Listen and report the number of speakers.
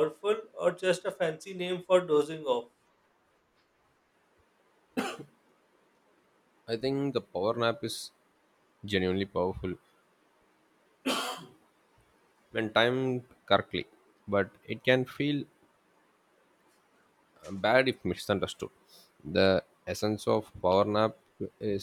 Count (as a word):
two